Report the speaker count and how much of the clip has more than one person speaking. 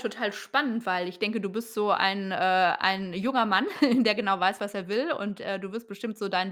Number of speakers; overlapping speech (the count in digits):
1, no overlap